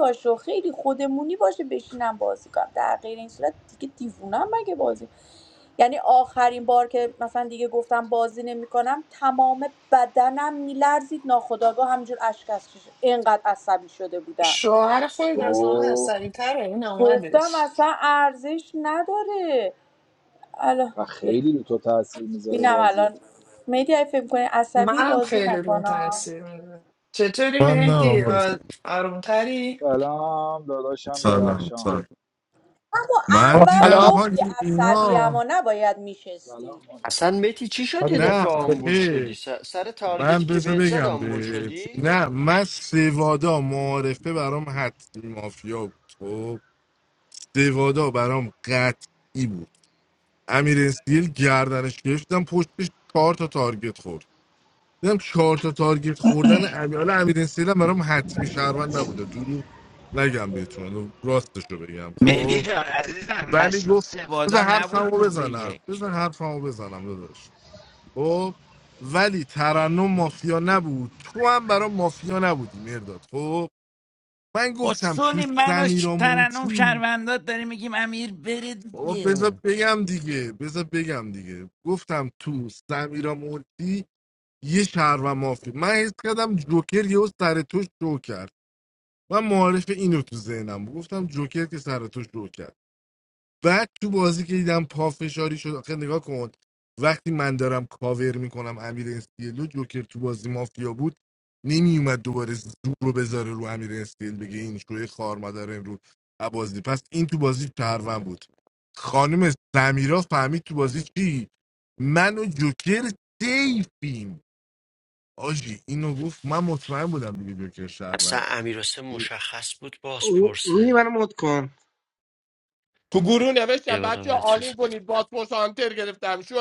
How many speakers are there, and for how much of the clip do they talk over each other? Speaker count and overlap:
eight, about 14%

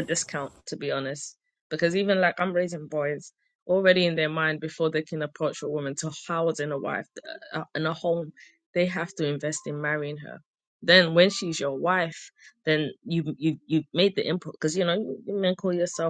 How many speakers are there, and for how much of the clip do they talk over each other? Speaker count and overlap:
one, no overlap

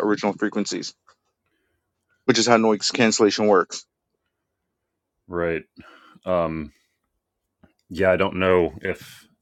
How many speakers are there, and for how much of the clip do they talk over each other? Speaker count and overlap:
two, no overlap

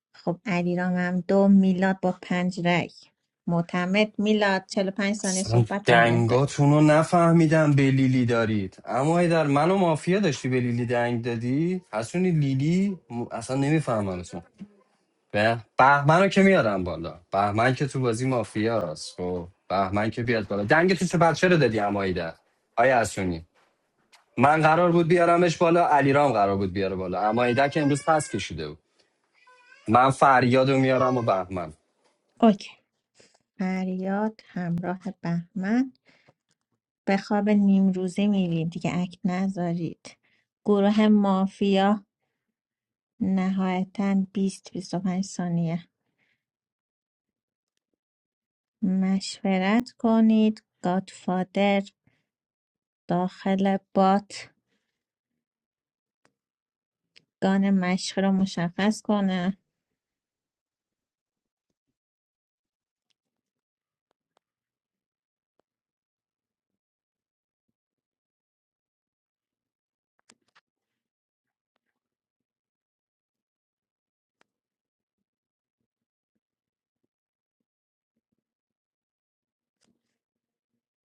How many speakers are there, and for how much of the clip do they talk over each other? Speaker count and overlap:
two, about 1%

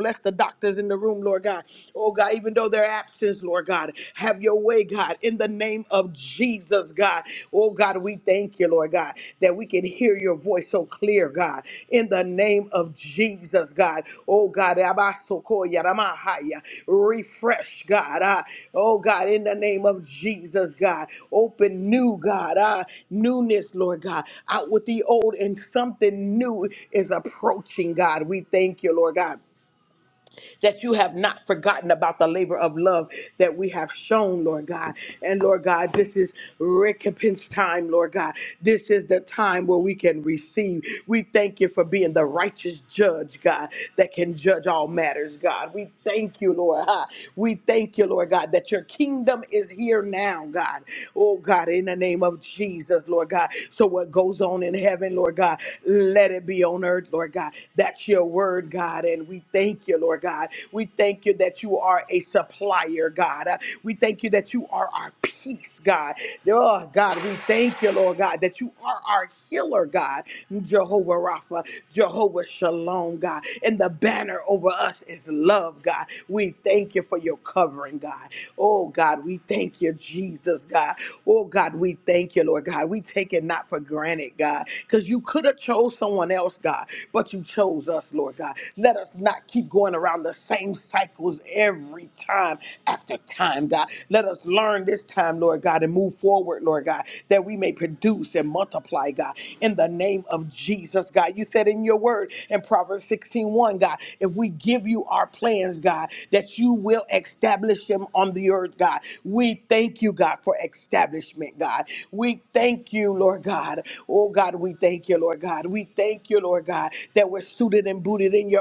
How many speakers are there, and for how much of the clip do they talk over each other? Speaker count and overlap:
one, no overlap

